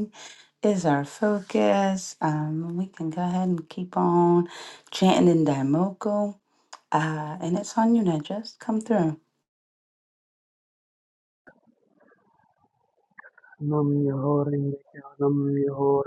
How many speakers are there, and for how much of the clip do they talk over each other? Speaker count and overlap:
two, no overlap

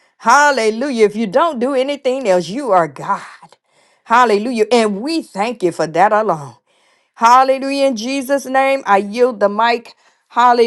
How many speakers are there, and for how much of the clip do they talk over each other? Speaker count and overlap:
one, no overlap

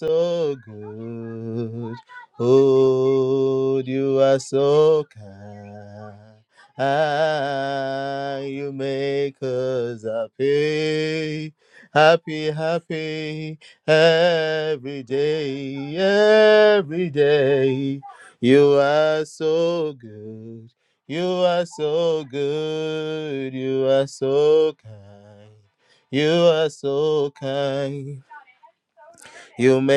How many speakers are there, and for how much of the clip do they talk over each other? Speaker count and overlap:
one, no overlap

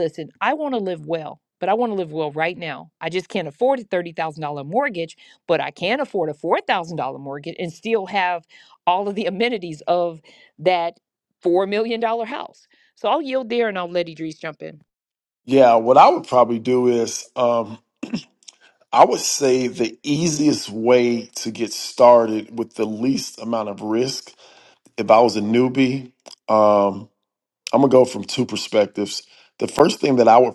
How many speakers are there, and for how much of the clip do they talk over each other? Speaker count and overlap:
two, no overlap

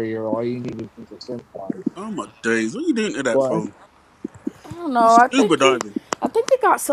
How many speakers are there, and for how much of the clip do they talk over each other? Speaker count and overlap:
three, about 16%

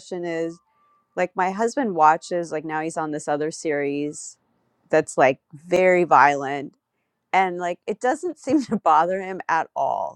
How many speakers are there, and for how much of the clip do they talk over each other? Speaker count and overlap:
one, no overlap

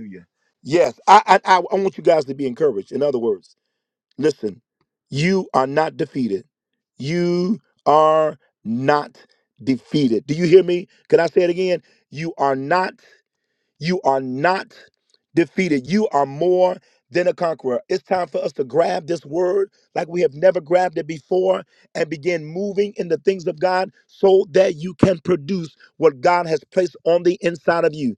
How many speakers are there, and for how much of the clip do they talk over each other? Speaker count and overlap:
one, no overlap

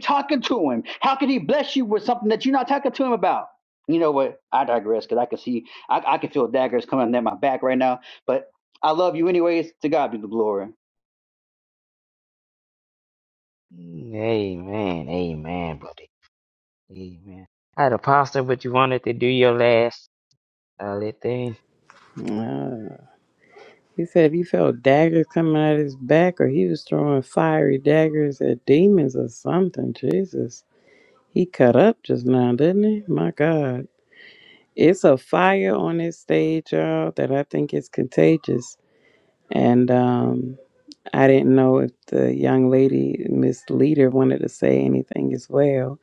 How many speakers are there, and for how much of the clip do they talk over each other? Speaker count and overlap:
three, no overlap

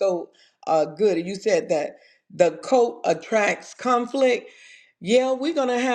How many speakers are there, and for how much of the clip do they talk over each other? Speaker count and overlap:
one, no overlap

